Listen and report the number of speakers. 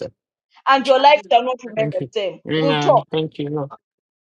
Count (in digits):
2